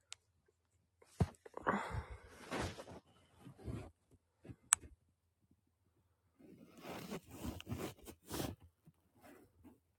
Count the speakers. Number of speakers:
zero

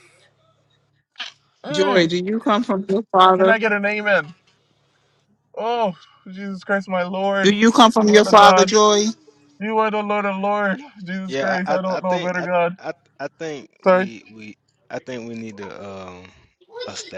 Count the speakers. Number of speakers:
three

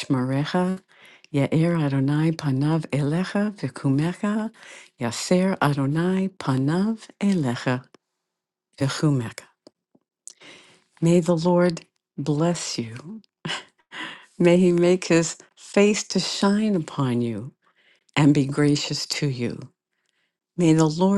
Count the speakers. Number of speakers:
one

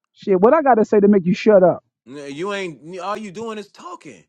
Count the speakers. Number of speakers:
two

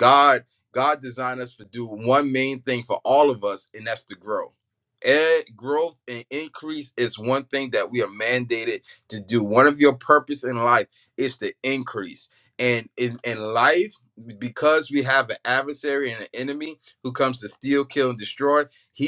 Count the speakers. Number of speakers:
one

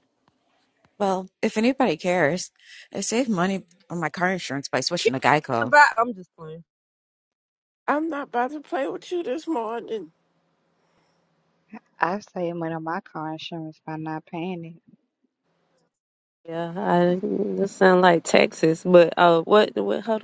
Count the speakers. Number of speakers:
four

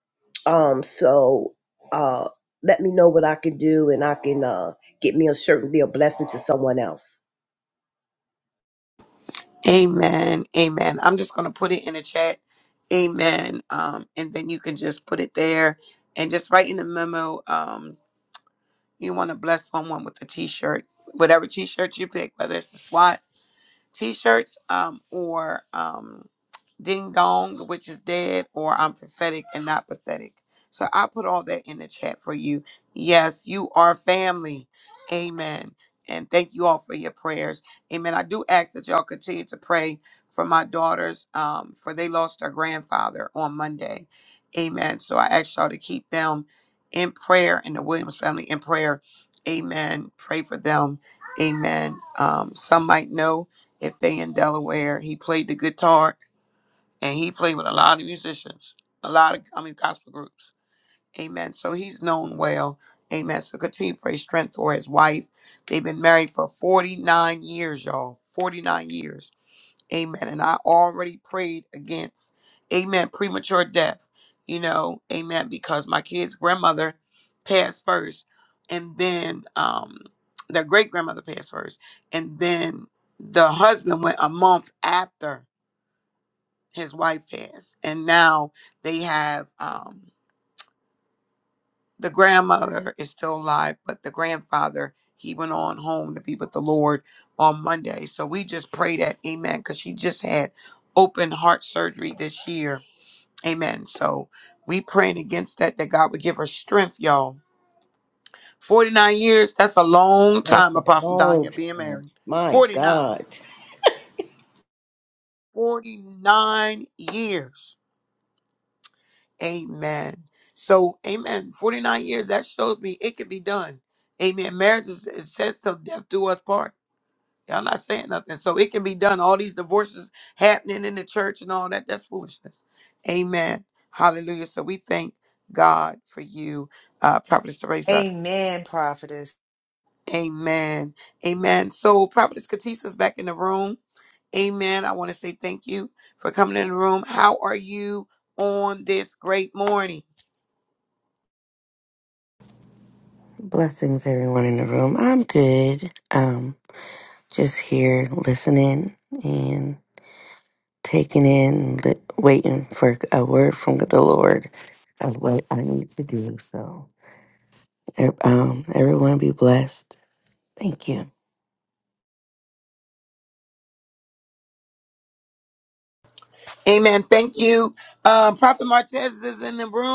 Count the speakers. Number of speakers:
four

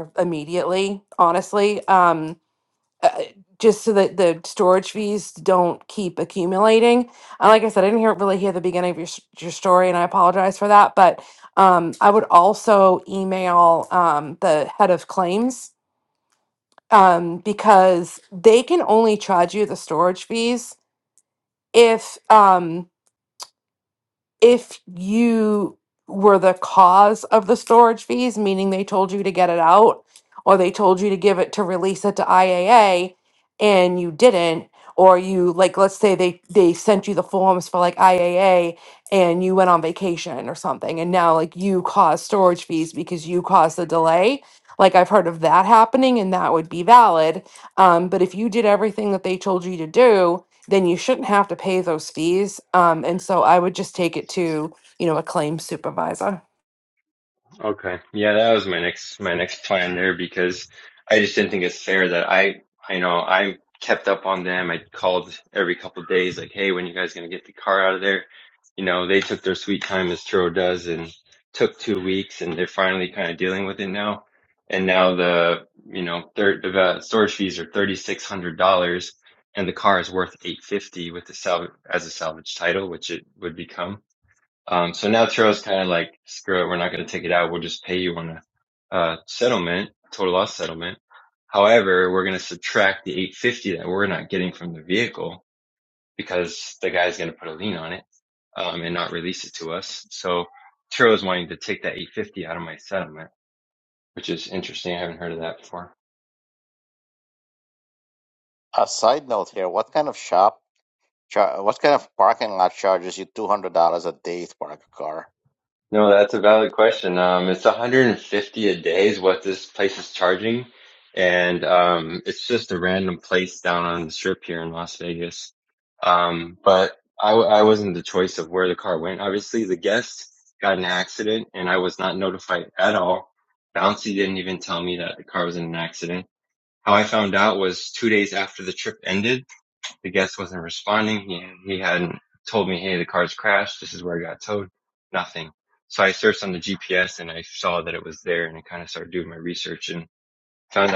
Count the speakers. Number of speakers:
three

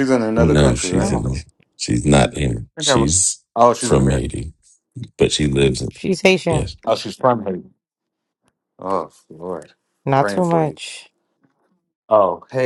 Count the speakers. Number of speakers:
three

